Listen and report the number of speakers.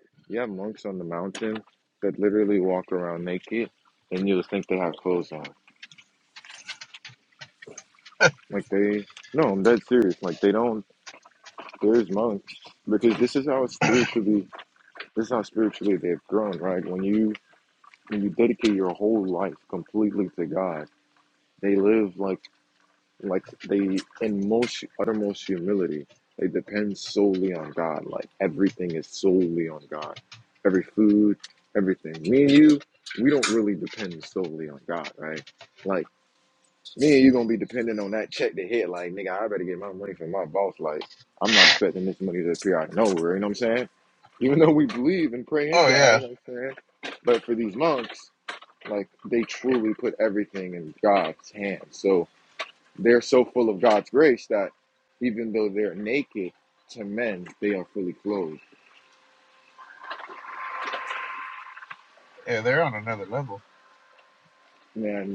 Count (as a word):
two